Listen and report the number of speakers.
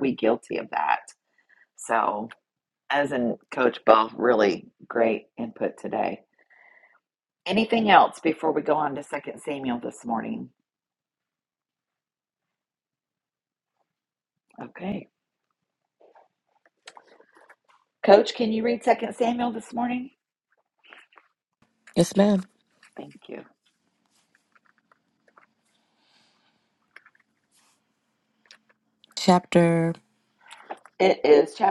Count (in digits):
2